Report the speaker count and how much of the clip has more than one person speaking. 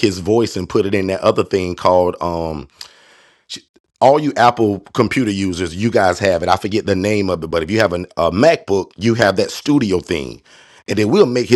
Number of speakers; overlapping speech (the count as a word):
one, no overlap